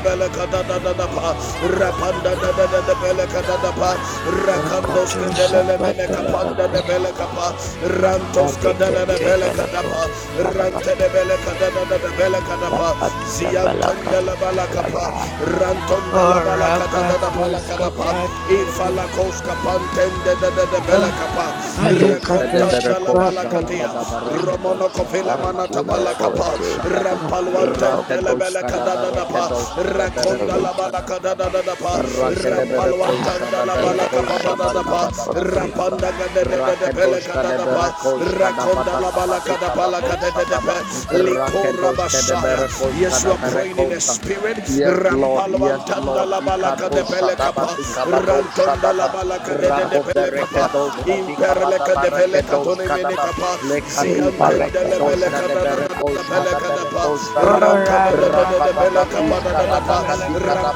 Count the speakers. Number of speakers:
three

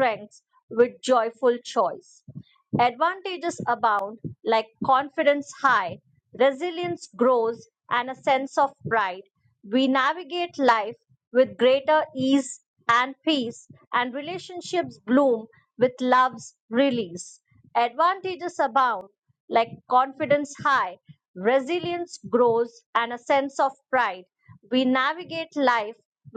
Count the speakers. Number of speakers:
one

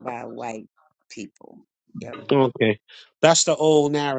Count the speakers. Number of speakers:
two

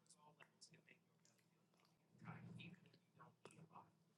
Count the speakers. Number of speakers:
zero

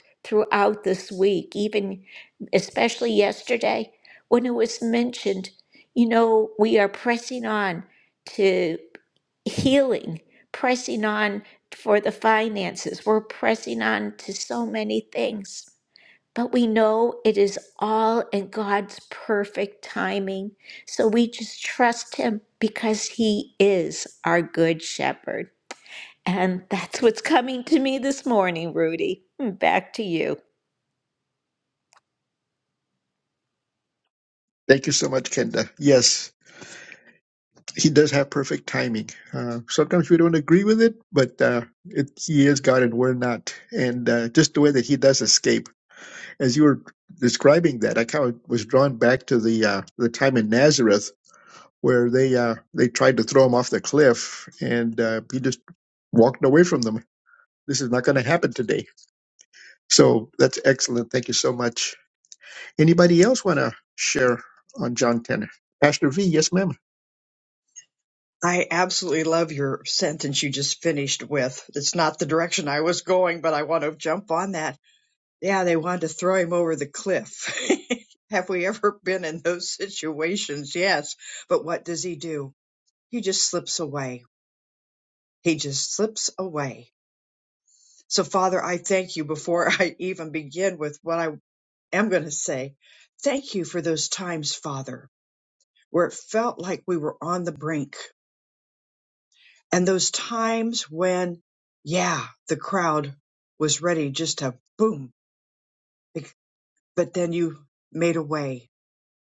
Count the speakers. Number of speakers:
three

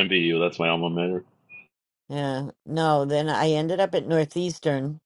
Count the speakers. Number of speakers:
two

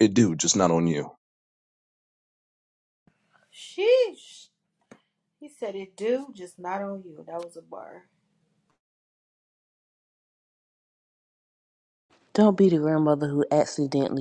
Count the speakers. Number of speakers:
three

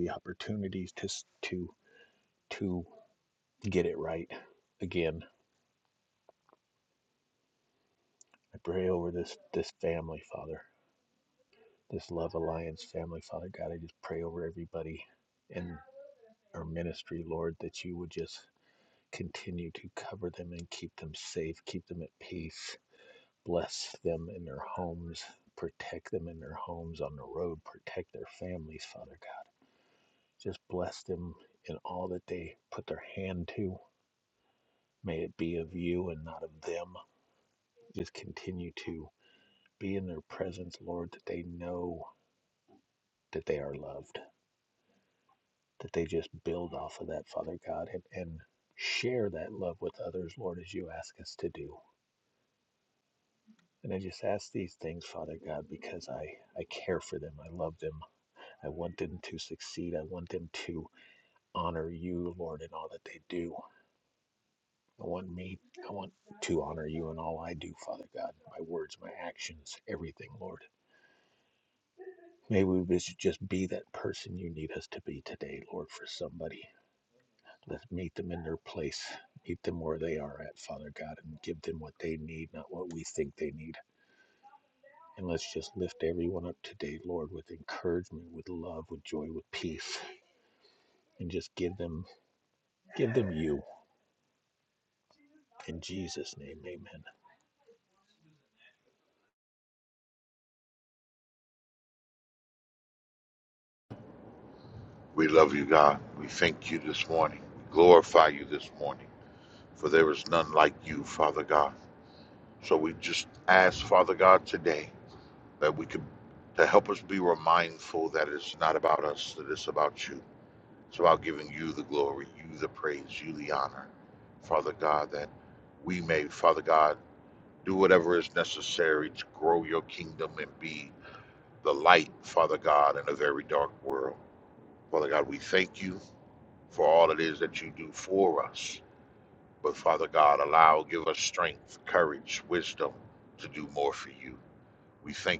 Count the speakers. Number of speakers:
two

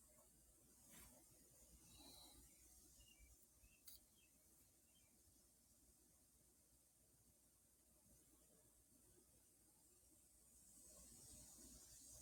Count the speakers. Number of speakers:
zero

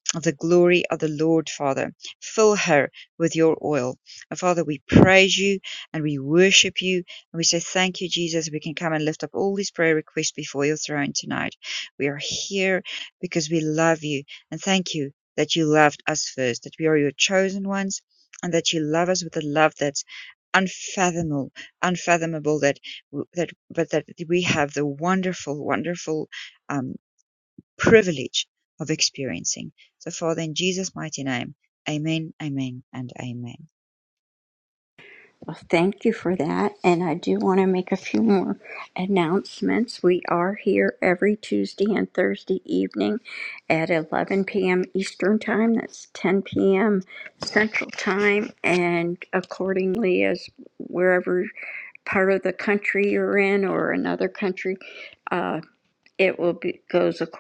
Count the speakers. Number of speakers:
two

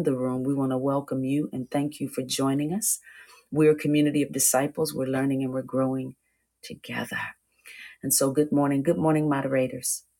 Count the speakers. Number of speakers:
one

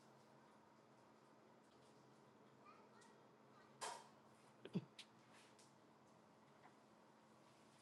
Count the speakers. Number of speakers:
zero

